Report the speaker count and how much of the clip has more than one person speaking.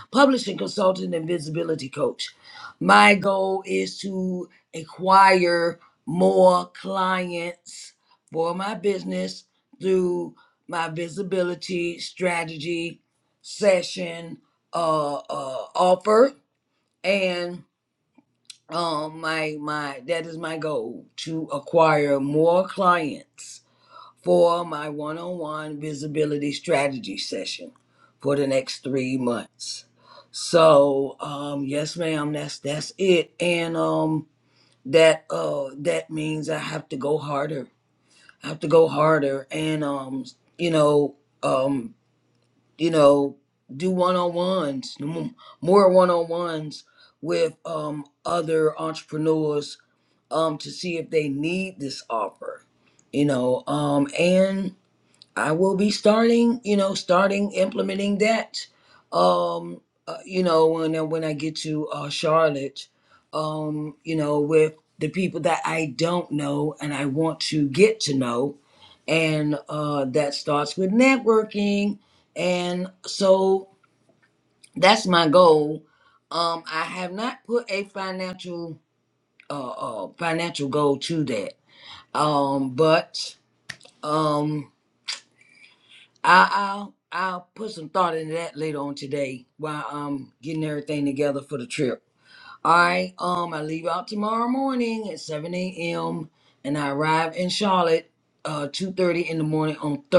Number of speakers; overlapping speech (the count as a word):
one, no overlap